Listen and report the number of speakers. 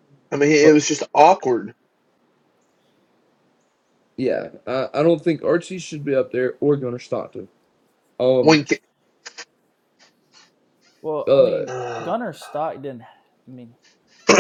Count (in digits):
3